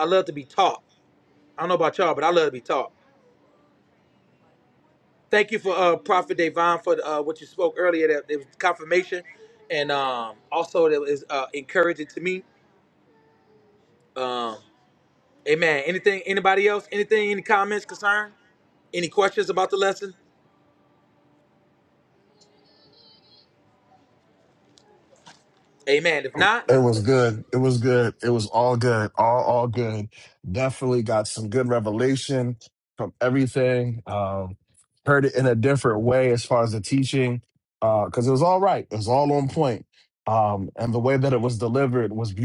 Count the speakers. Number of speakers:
2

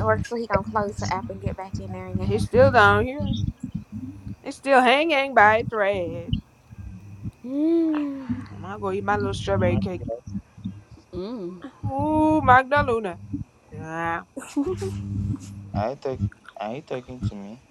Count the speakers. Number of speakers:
4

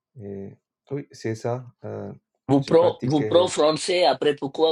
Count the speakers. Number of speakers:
2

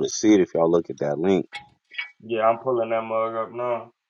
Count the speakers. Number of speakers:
2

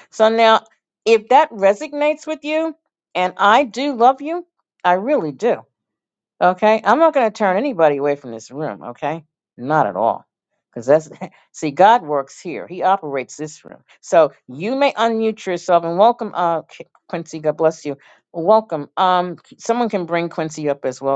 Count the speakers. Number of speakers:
1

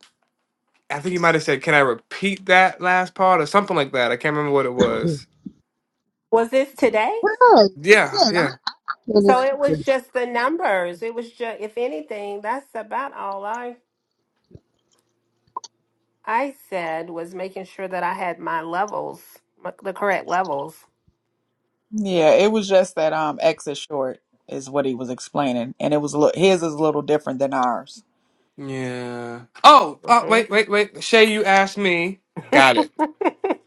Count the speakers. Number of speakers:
4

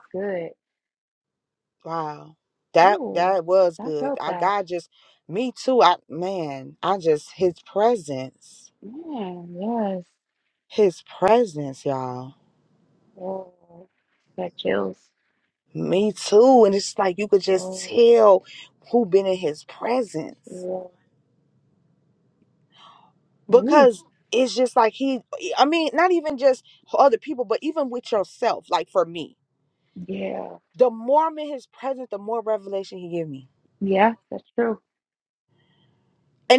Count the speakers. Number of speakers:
2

